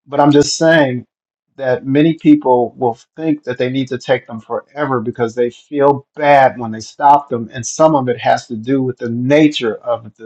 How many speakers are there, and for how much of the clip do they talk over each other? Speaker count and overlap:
1, no overlap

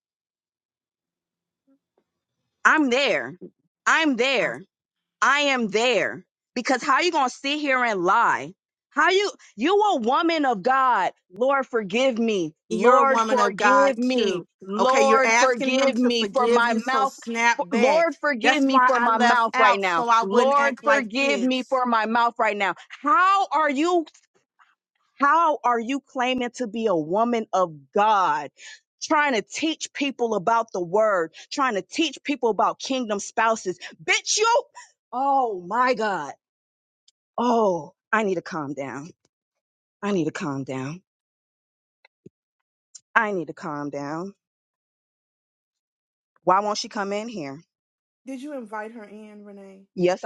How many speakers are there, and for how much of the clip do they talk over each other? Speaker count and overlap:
2, about 15%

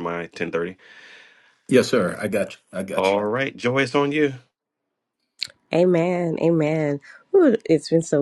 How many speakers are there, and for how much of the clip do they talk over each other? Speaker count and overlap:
3, about 2%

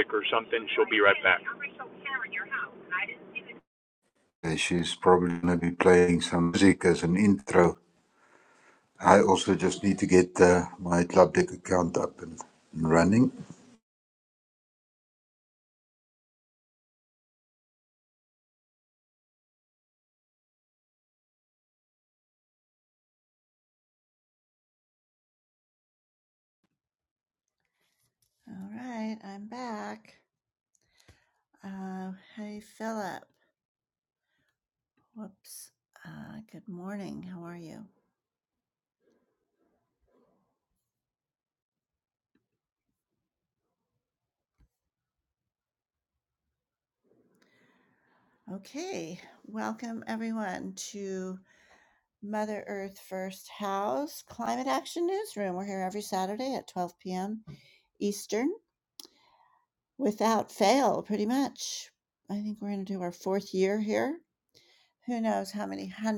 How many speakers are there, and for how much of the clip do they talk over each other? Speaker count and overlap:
3, no overlap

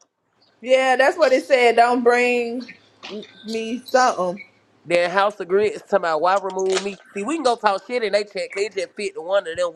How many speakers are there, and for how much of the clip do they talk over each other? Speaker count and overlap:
2, no overlap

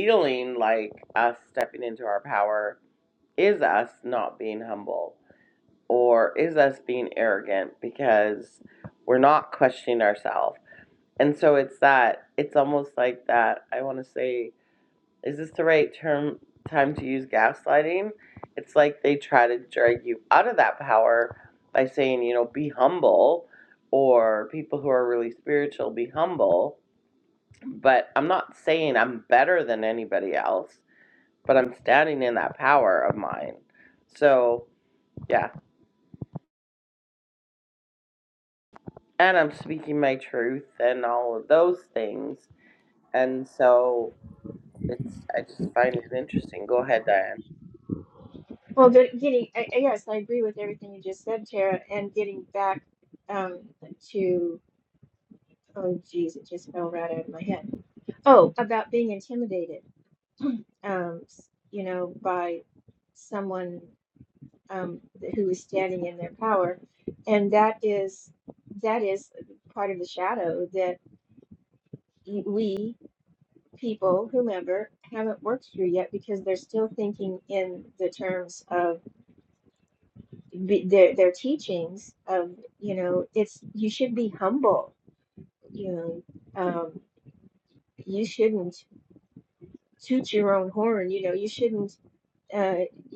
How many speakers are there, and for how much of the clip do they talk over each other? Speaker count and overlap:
2, no overlap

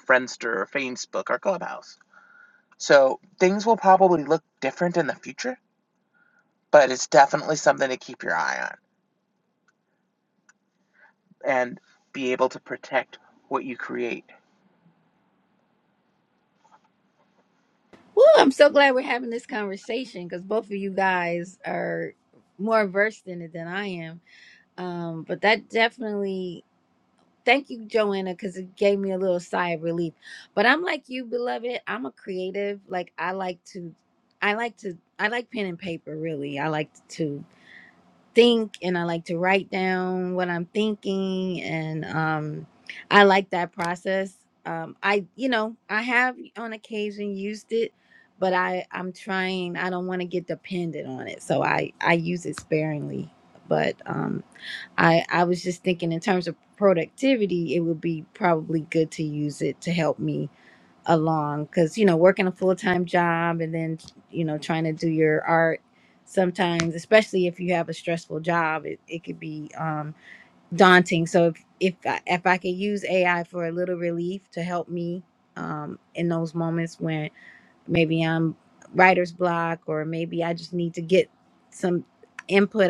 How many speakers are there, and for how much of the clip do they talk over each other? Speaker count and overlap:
2, no overlap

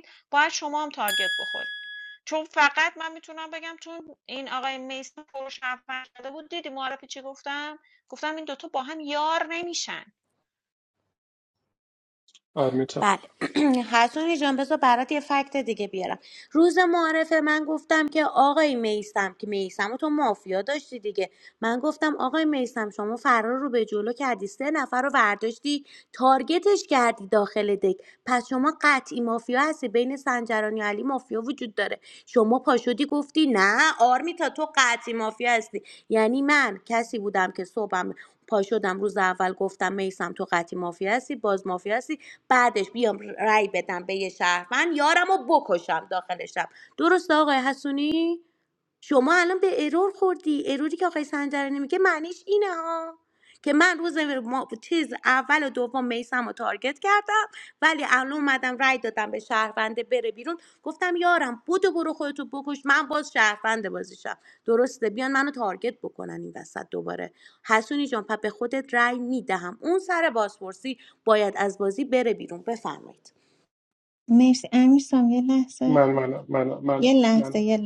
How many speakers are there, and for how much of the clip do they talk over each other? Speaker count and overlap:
4, about 1%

